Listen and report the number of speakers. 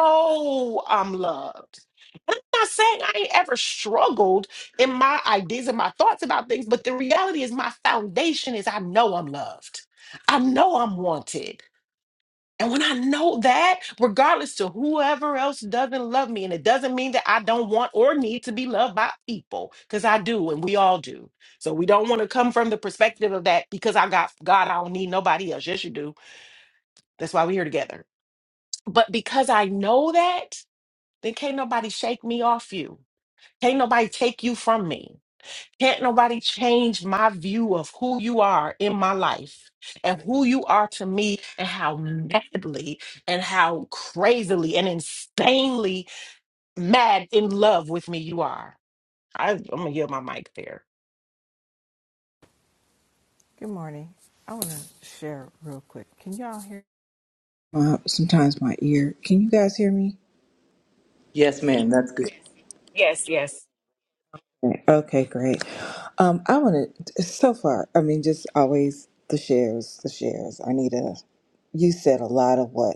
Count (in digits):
3